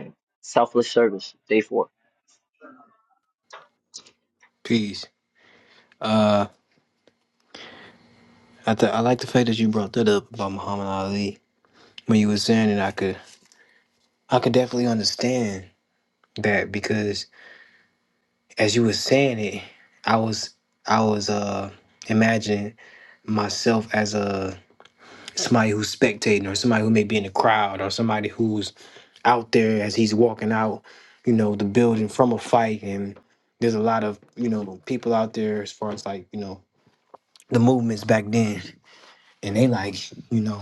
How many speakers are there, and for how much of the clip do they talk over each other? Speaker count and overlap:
two, no overlap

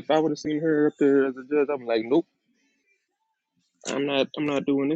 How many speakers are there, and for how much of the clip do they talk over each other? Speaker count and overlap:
one, no overlap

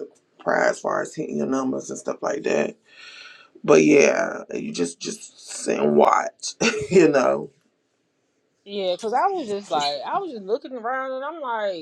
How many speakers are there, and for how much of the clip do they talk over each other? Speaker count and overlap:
two, about 2%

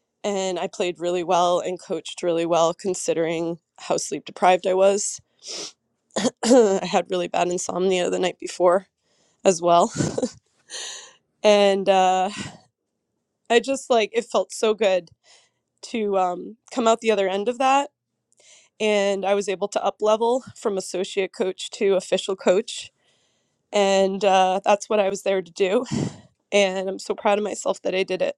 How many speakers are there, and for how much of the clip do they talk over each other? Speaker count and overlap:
one, no overlap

